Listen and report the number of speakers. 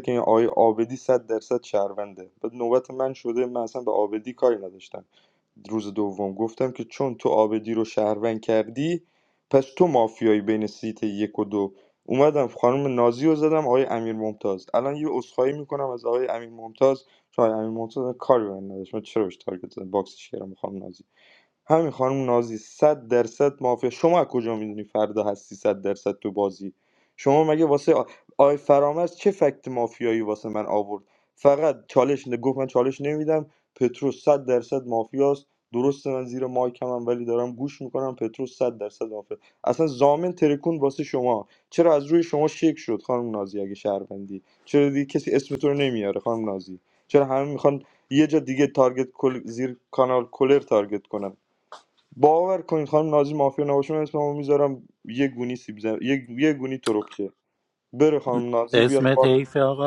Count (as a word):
two